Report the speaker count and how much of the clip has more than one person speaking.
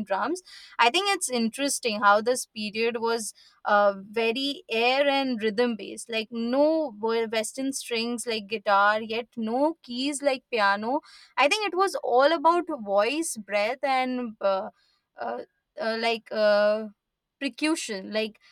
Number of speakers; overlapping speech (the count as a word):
one, no overlap